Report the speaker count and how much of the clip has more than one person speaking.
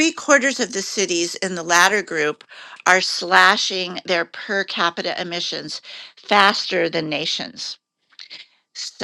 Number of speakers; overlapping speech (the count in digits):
1, no overlap